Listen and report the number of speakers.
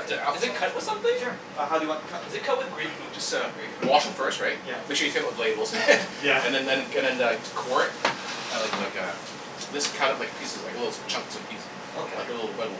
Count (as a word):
three